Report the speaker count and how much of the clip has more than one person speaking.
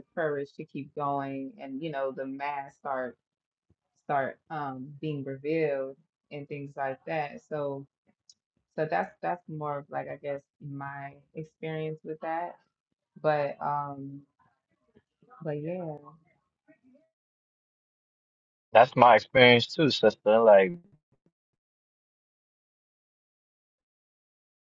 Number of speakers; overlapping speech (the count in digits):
2, no overlap